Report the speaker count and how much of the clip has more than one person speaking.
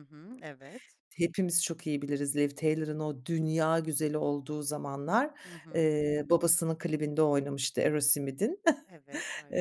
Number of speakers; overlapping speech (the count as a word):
two, about 2%